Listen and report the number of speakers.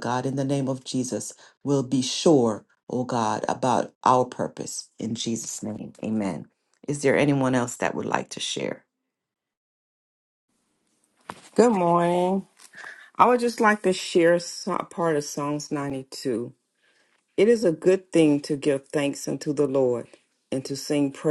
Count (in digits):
2